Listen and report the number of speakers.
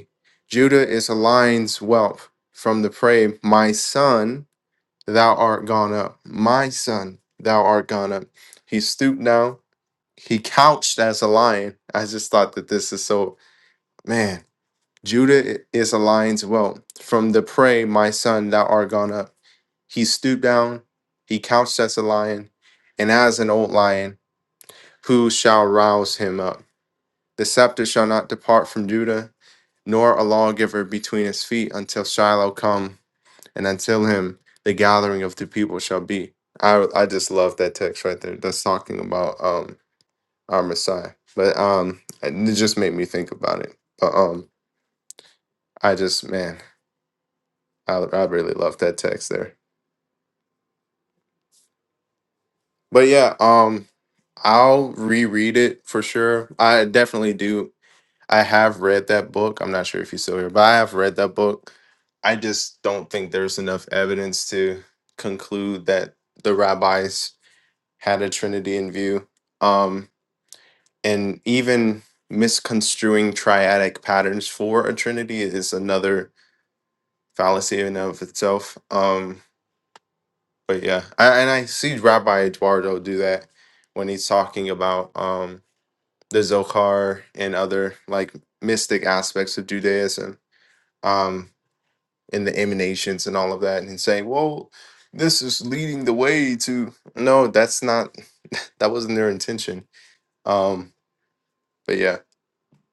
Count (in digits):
1